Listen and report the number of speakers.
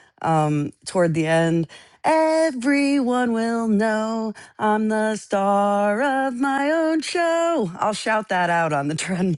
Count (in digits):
1